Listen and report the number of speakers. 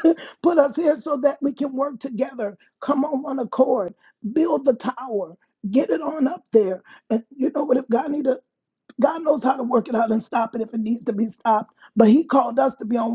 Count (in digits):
1